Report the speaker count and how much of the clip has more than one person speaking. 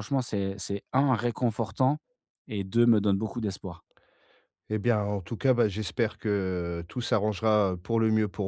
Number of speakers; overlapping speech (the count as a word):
two, no overlap